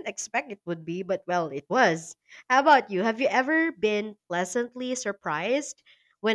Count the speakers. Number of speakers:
one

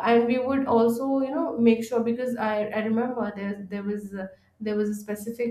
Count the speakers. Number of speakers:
one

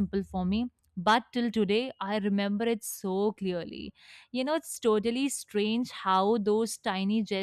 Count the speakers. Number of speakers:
one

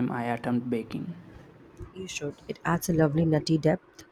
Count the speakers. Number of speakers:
two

